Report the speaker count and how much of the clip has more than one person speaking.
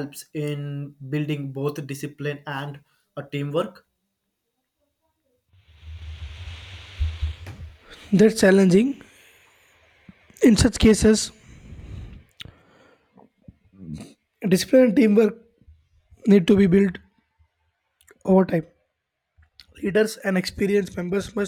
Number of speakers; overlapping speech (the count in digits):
2, no overlap